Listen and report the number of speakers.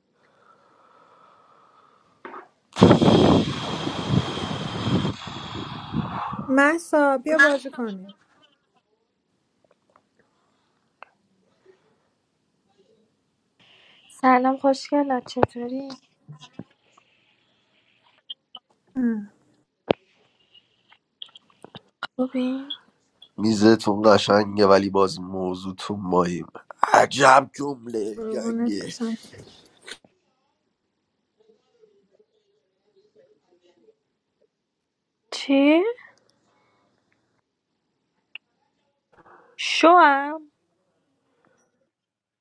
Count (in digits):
3